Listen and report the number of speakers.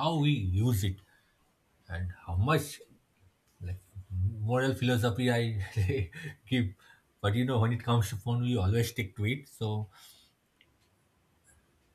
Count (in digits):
1